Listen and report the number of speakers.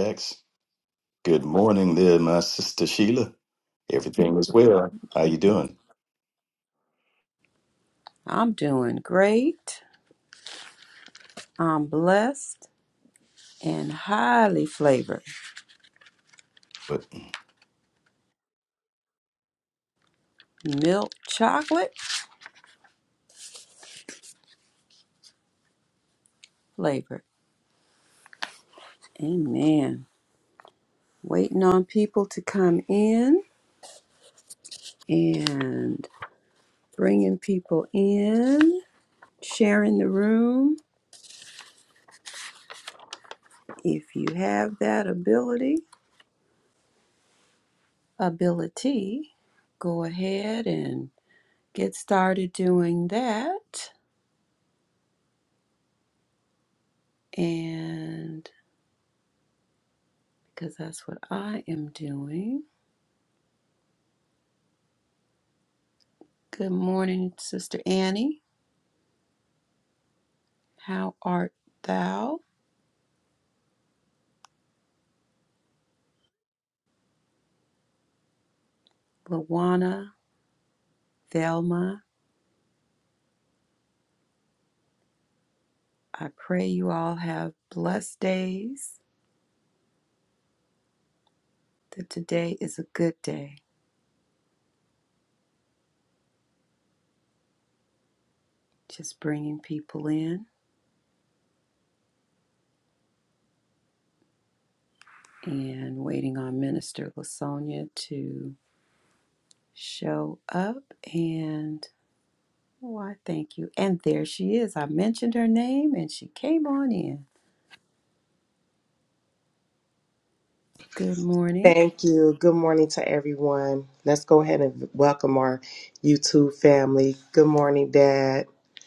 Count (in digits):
3